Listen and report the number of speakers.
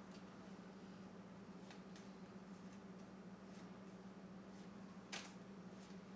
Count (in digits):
0